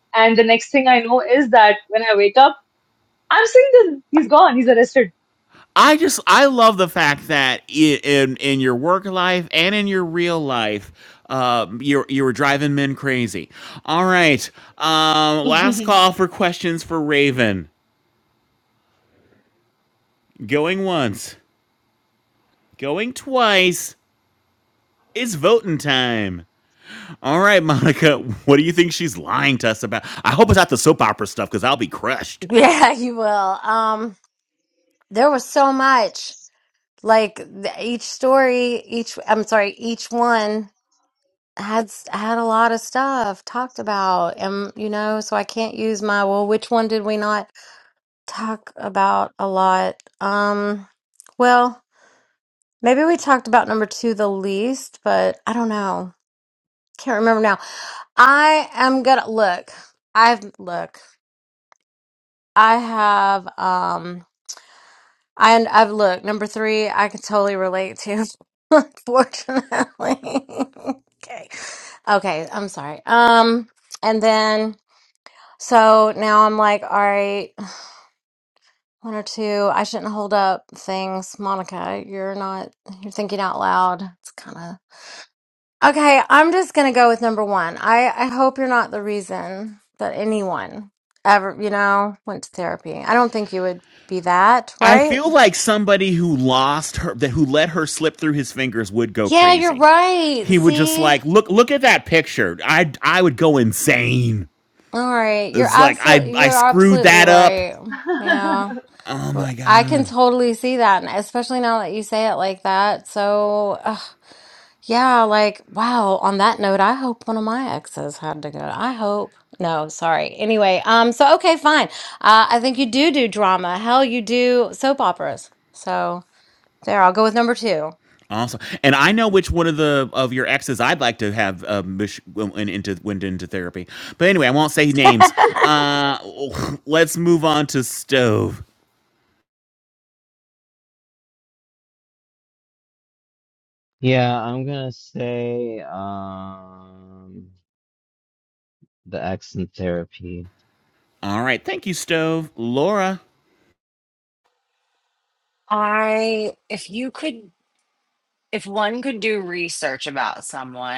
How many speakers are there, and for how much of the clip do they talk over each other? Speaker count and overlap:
five, about 3%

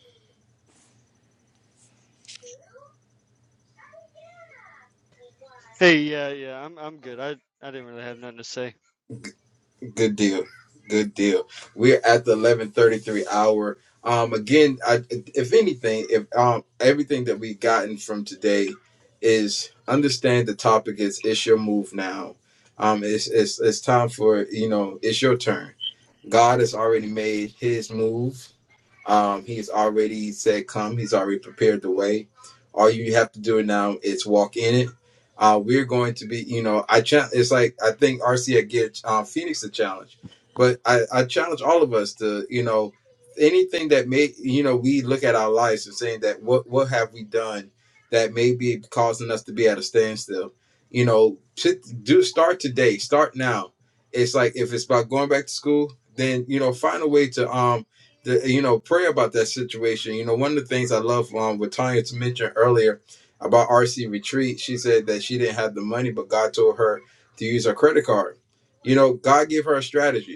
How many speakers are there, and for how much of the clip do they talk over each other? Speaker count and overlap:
two, no overlap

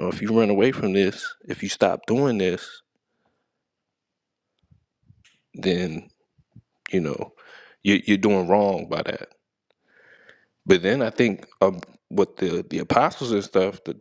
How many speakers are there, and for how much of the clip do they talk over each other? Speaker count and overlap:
one, no overlap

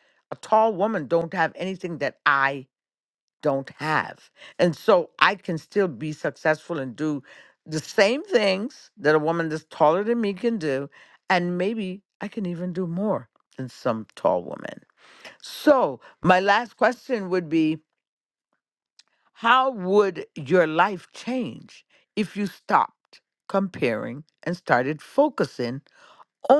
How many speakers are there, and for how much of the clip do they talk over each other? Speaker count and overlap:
one, no overlap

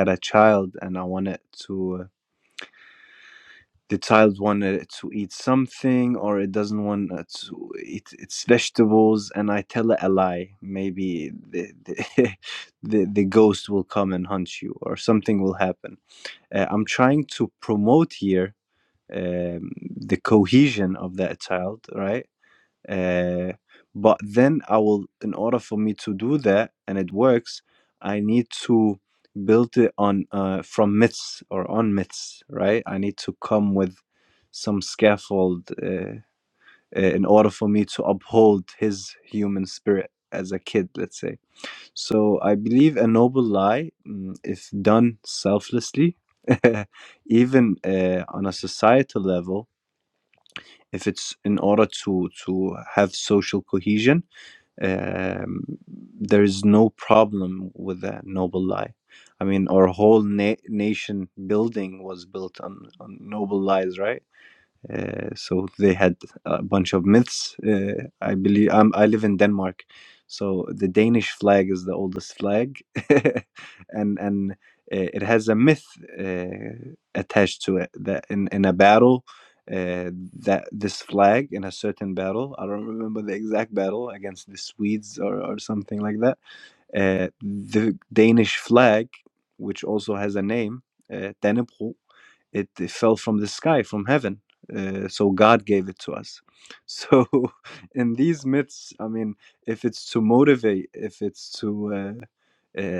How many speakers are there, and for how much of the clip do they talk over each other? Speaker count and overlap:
one, no overlap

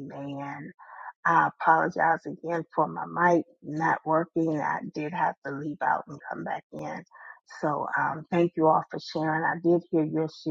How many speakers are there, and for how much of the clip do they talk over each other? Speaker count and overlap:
one, no overlap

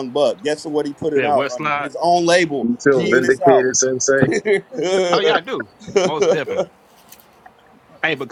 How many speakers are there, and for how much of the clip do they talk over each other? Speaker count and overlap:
three, about 18%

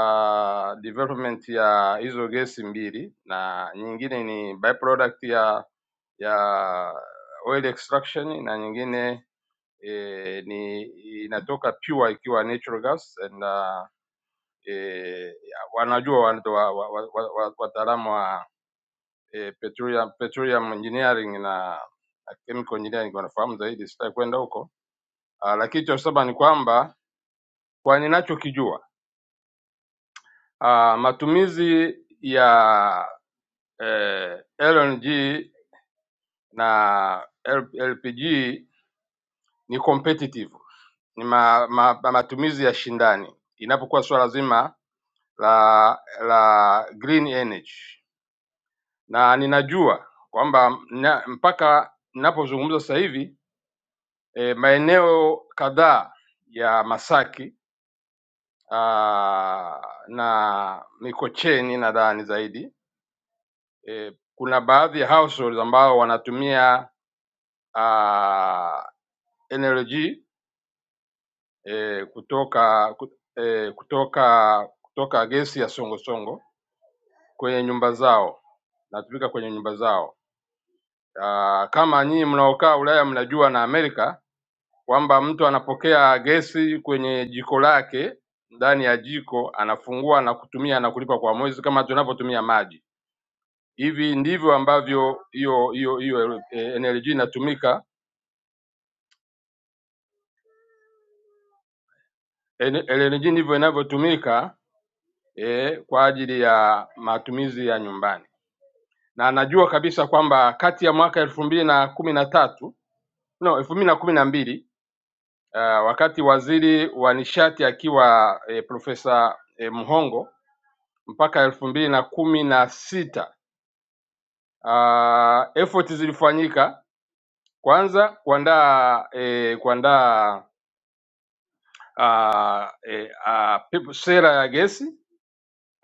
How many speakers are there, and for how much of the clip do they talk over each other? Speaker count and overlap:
one, no overlap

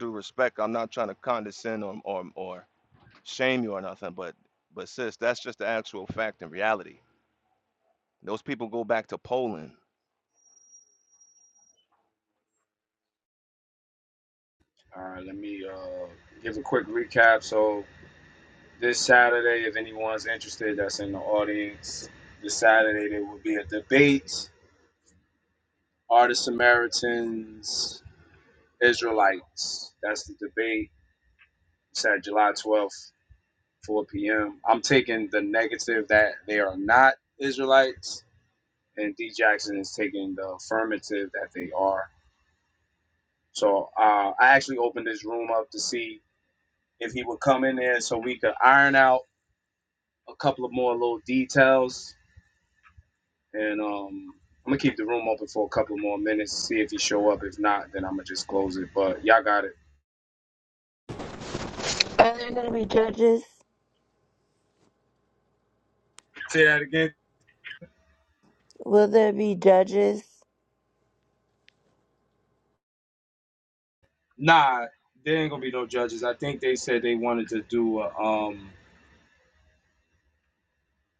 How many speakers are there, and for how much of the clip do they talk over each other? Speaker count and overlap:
three, no overlap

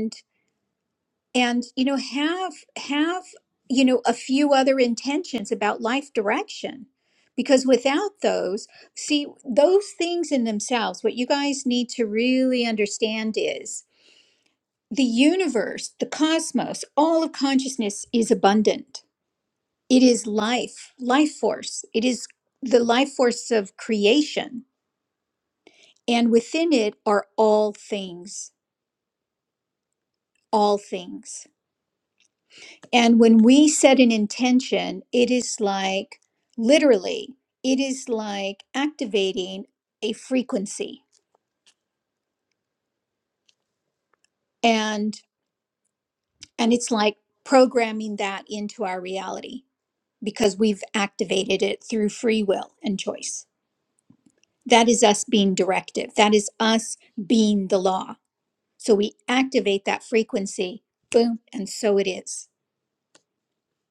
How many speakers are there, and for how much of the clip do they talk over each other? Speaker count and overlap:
one, no overlap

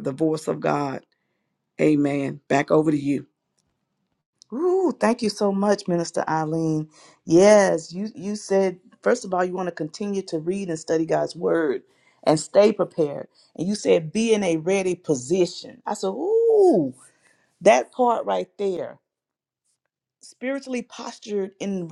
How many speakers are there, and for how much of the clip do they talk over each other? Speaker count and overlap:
two, no overlap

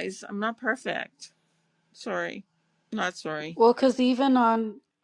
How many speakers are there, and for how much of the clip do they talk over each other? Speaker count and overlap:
two, no overlap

